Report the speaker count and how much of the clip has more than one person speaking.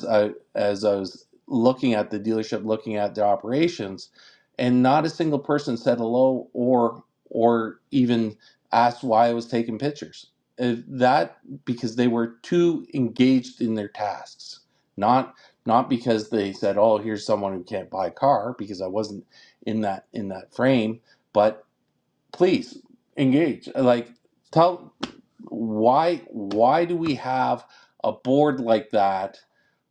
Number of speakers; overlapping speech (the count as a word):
one, no overlap